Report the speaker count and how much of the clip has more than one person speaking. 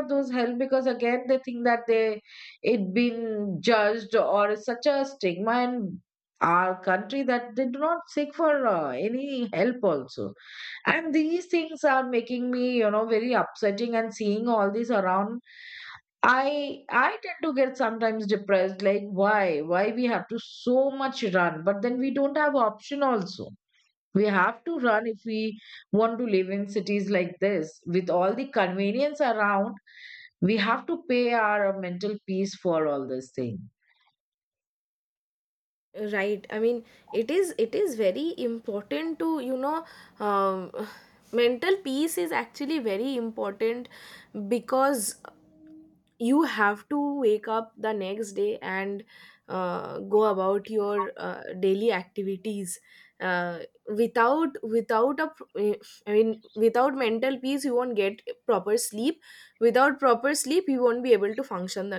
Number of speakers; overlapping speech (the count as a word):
two, no overlap